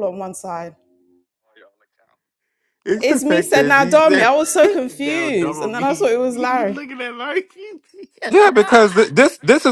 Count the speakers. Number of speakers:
3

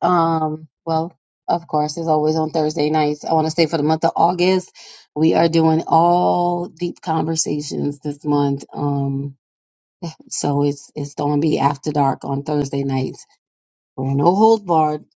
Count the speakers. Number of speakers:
1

